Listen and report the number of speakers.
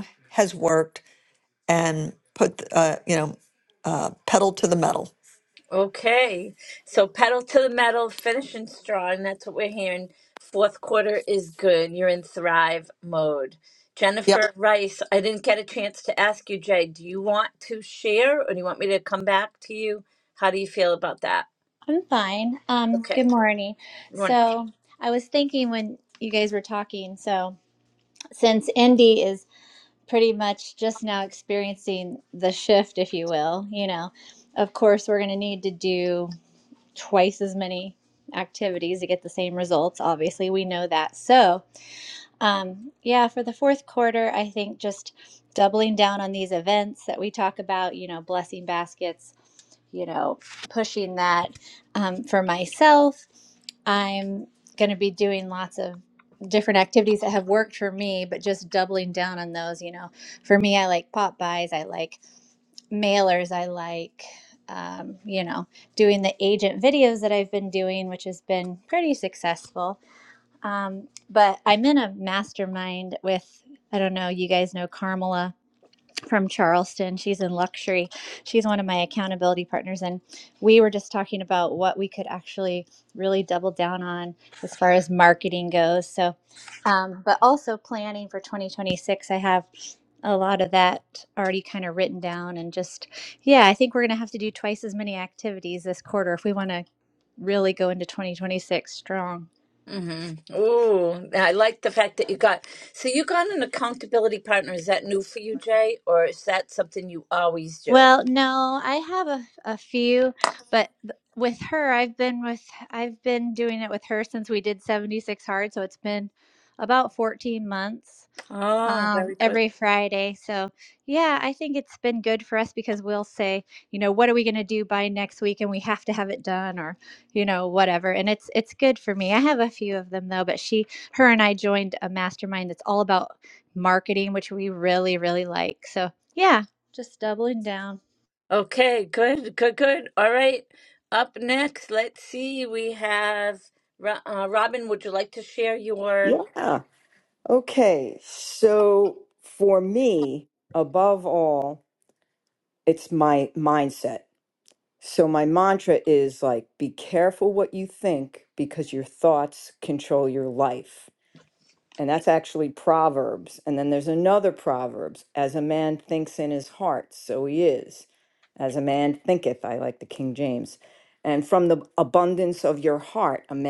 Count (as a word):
four